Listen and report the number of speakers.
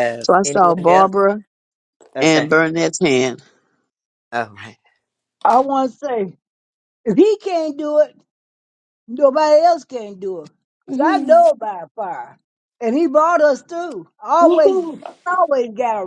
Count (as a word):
three